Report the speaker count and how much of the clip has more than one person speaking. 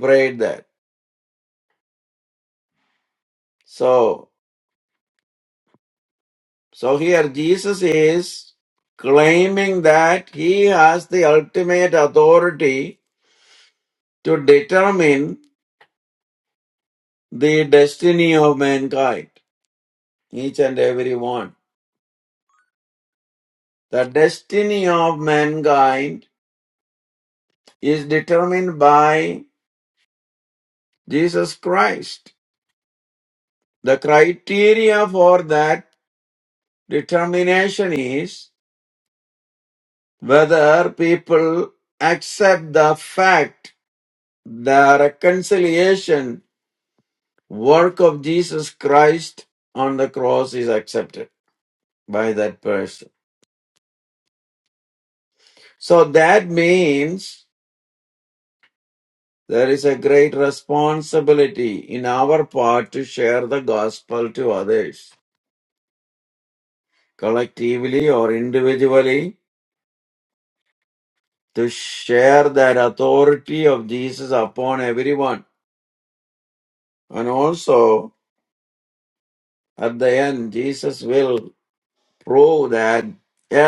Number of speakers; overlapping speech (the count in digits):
1, no overlap